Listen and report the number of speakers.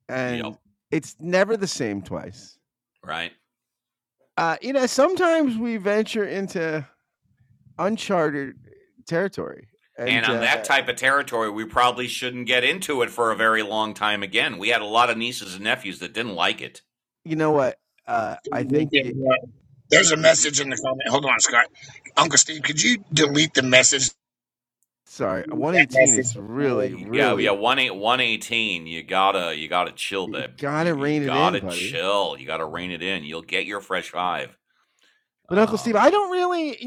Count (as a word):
three